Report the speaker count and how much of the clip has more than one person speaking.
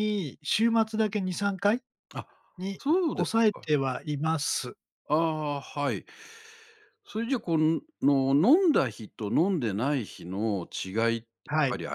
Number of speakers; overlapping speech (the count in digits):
2, about 5%